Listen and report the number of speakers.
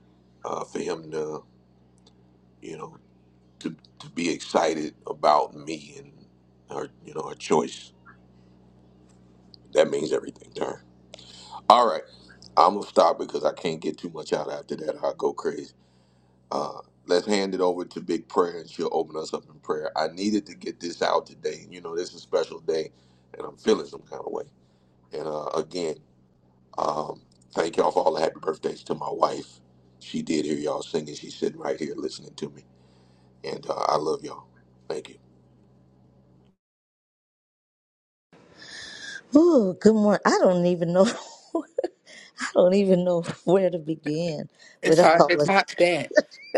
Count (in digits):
3